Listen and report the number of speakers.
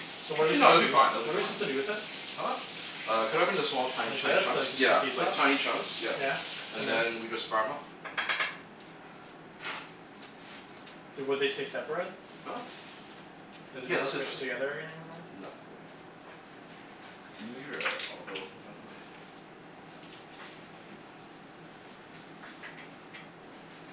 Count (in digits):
2